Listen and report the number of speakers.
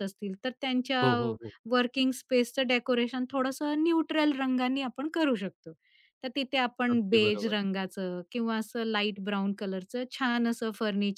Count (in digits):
2